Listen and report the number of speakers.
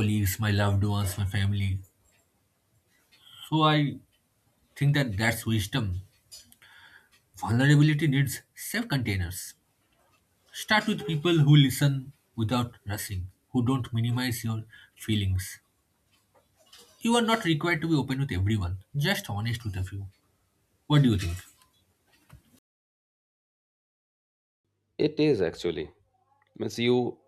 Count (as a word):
two